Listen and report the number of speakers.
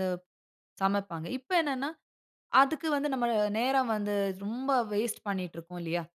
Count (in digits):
1